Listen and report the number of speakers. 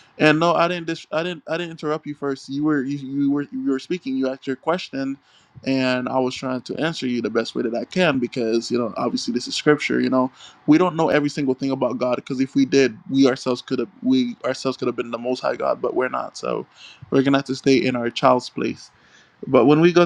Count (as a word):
one